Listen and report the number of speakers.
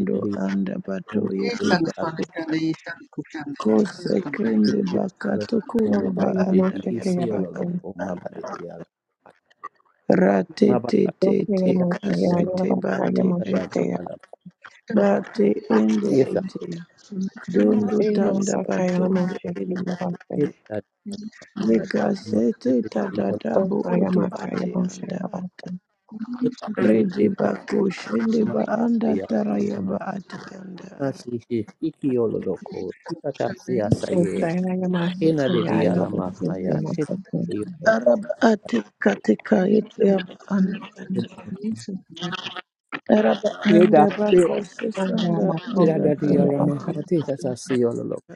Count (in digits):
4